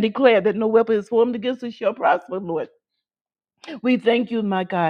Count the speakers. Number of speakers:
one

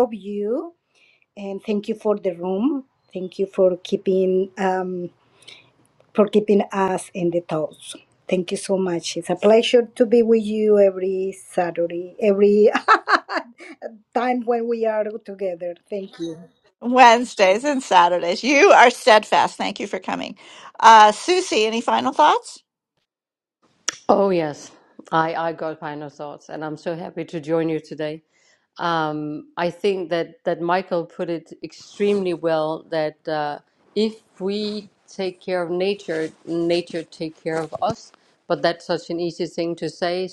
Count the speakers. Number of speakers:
three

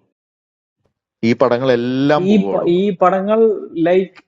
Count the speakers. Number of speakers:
two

